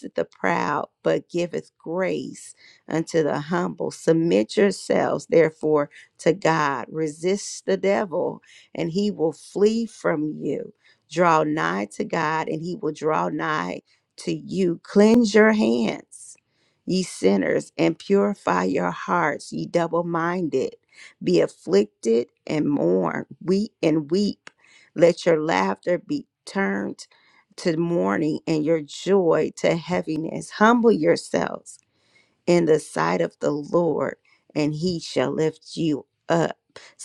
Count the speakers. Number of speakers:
one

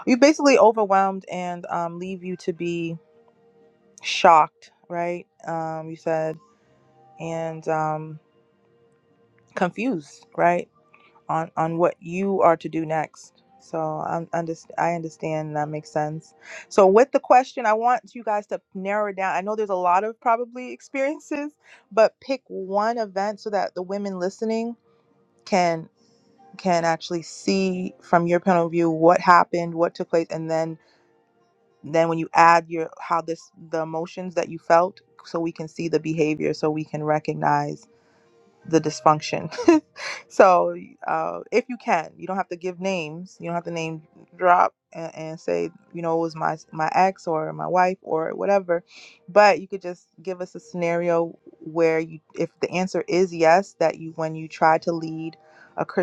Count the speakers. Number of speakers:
one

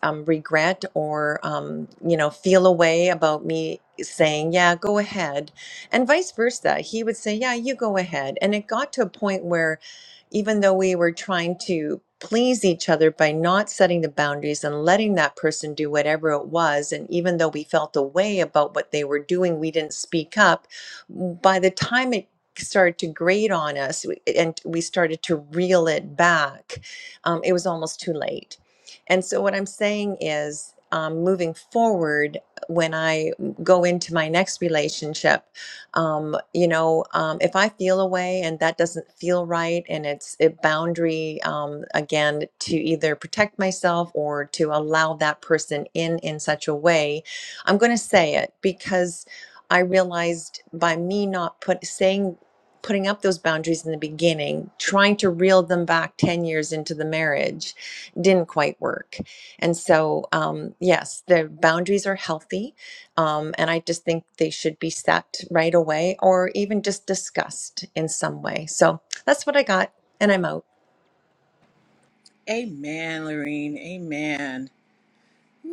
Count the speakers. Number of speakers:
two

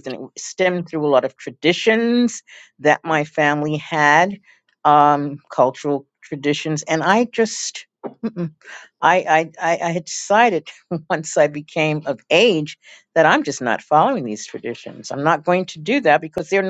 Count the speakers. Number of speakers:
one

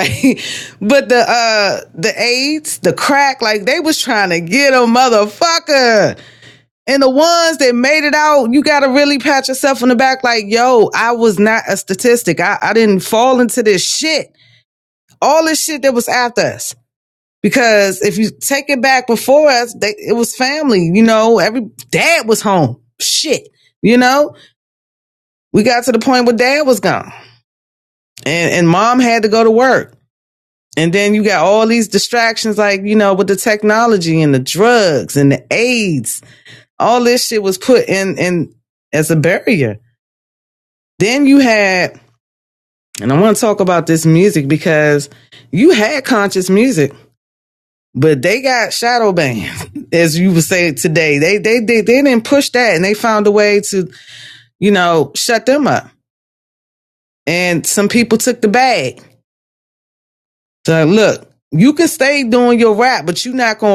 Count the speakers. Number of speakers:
one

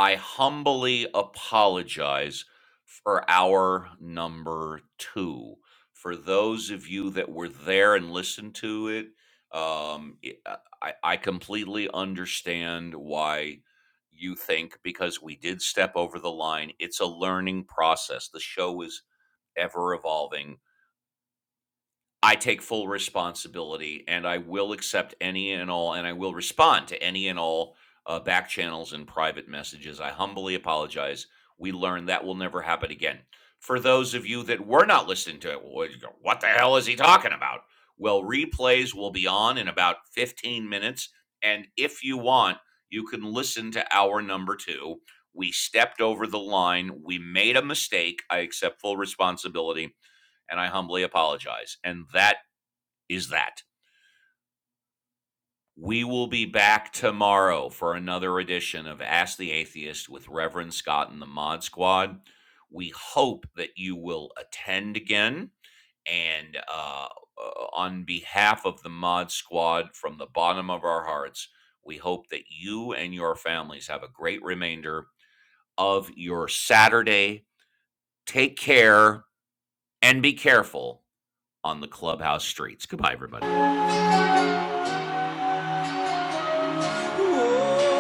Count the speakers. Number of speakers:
one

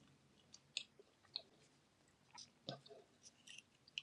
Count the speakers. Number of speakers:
zero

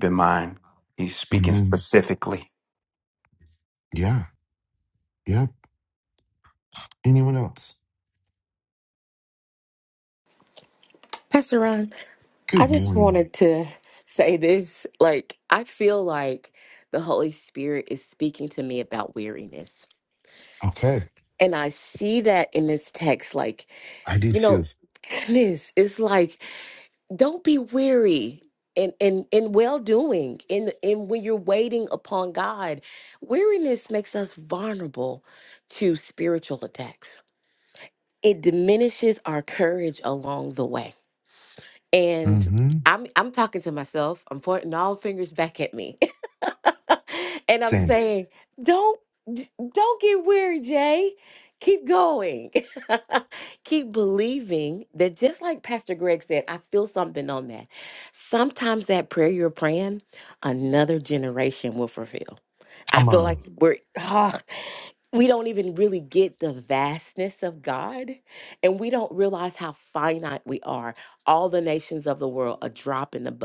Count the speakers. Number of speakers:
three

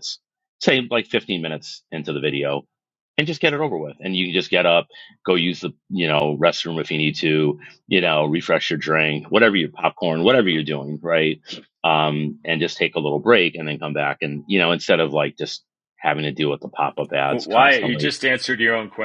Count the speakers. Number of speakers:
two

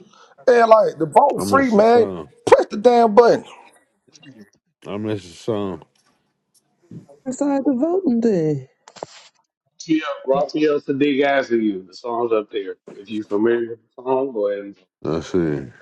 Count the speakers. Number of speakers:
four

